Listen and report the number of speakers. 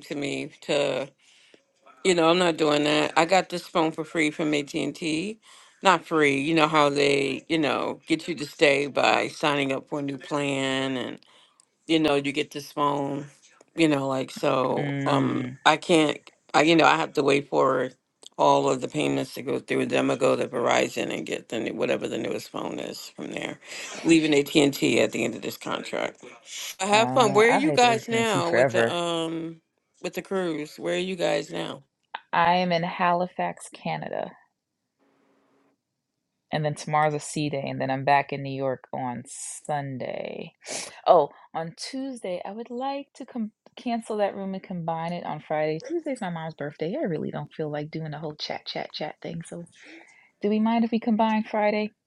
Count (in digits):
2